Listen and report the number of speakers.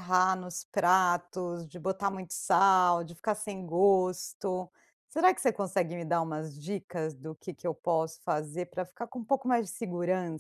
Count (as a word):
one